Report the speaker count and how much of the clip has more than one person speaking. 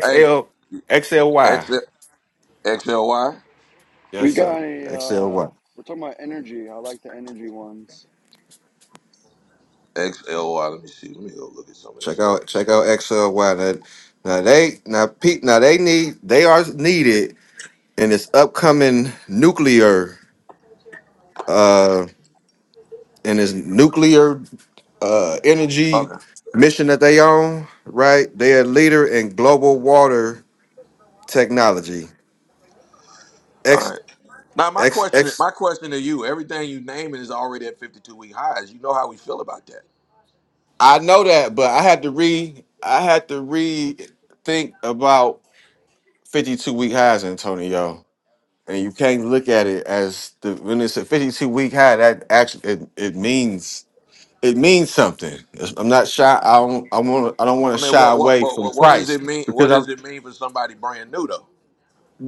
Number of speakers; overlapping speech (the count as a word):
three, about 7%